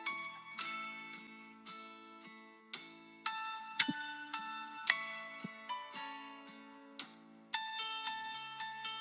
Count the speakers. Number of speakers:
0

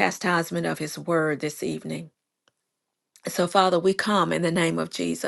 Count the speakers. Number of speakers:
1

